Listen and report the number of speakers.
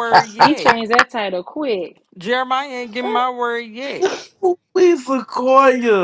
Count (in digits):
3